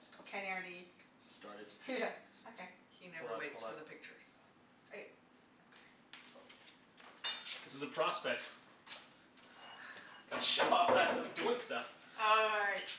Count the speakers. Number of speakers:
three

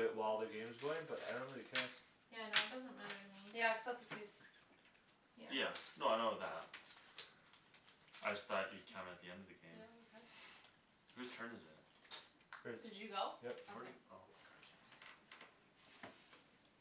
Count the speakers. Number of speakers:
four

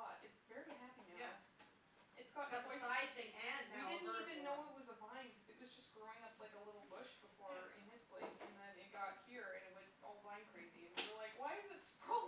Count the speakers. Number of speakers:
two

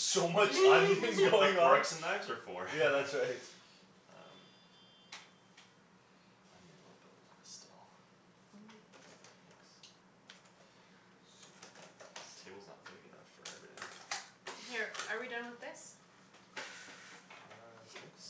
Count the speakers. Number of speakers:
three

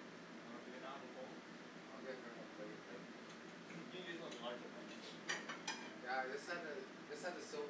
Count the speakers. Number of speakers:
two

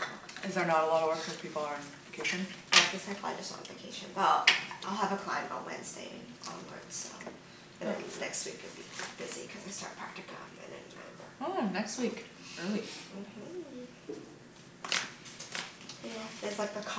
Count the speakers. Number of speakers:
two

